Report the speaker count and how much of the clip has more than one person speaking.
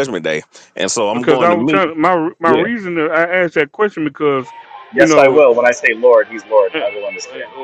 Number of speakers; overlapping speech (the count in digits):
3, about 22%